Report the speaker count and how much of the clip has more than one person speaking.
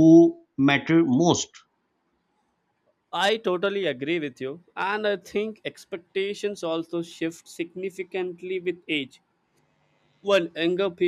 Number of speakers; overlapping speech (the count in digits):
2, no overlap